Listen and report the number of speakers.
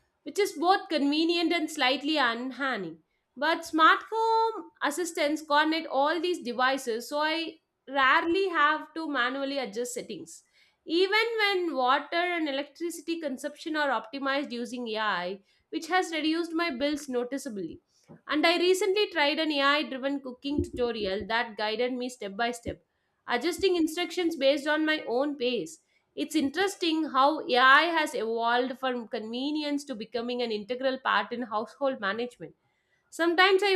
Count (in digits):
1